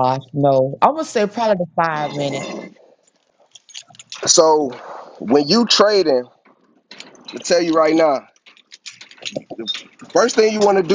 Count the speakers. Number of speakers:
2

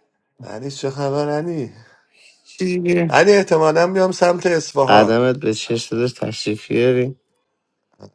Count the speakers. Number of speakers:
2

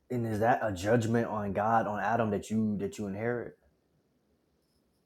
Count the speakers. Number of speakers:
1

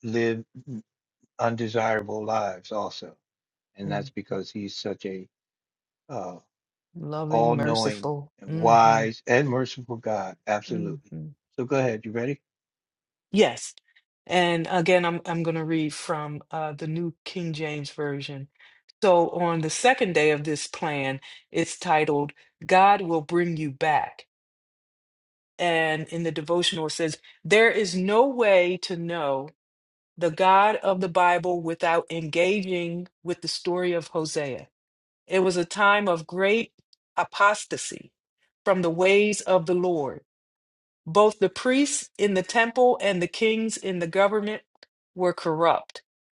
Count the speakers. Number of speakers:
2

